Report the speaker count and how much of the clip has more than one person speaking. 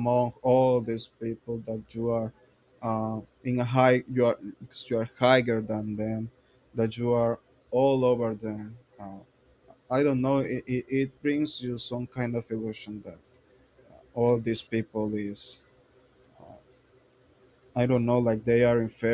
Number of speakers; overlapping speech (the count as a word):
one, no overlap